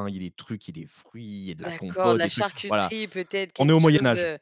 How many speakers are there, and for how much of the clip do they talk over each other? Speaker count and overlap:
2, about 46%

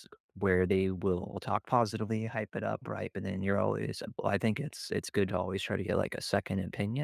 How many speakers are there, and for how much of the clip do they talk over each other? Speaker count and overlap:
1, no overlap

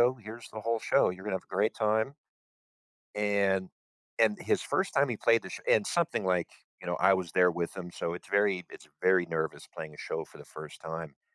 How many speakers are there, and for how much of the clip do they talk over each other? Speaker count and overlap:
1, no overlap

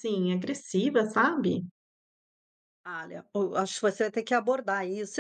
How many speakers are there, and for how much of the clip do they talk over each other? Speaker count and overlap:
2, no overlap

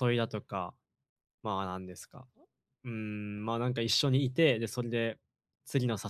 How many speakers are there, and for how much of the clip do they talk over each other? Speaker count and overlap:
1, no overlap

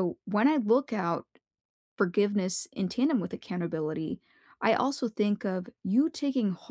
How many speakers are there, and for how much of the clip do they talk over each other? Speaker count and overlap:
1, no overlap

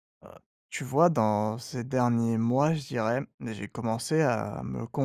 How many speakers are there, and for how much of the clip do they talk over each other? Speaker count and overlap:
1, no overlap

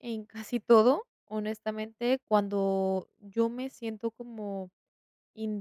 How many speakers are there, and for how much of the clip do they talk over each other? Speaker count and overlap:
1, no overlap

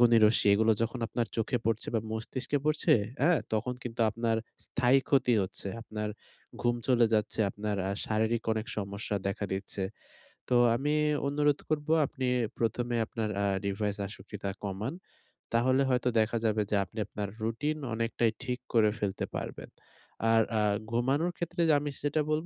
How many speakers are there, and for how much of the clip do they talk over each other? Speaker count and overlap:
1, no overlap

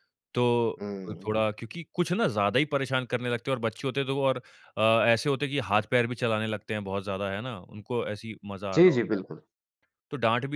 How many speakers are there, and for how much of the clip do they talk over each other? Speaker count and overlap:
2, about 5%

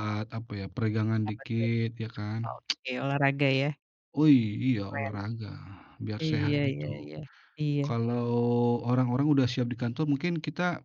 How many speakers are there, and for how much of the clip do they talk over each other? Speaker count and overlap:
2, about 14%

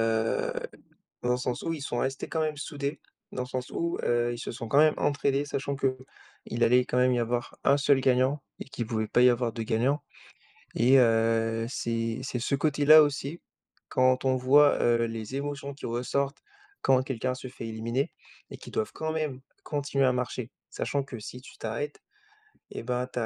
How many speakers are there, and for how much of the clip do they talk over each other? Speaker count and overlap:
1, no overlap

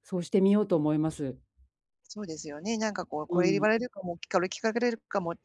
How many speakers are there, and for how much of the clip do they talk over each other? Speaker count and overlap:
2, about 7%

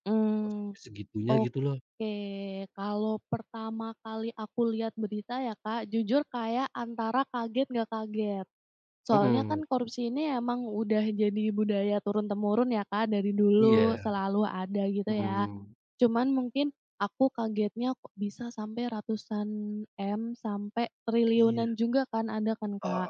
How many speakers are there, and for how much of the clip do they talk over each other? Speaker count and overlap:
2, about 10%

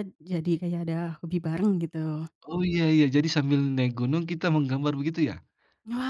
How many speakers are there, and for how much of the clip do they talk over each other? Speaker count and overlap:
2, no overlap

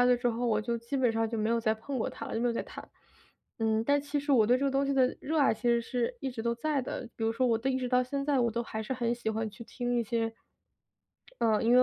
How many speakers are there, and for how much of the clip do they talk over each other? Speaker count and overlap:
1, no overlap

